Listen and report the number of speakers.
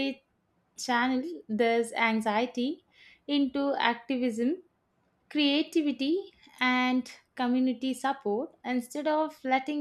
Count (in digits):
1